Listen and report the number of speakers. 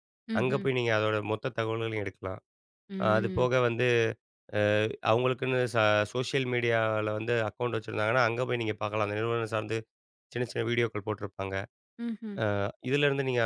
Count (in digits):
2